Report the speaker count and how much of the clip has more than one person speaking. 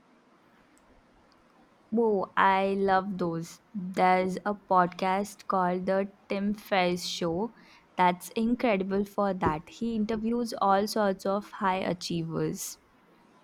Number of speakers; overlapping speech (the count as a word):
one, no overlap